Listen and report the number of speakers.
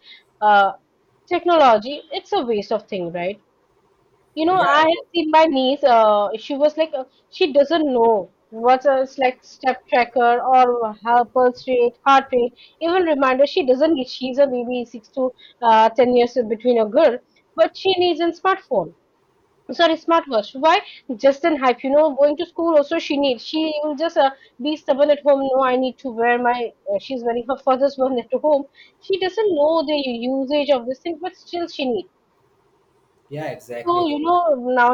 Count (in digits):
2